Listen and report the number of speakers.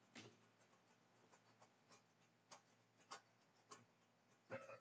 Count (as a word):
zero